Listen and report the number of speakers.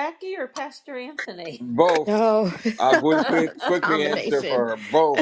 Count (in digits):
3